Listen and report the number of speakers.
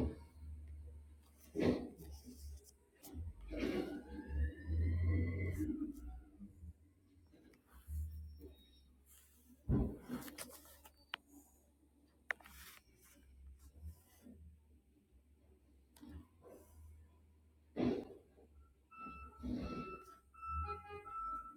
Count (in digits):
0